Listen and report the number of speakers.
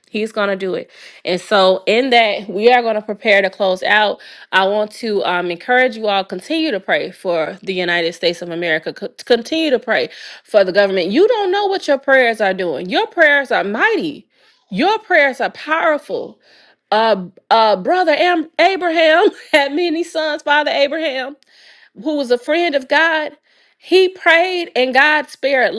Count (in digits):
1